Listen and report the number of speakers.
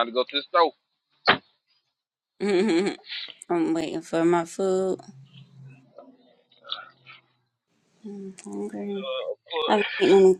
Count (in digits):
2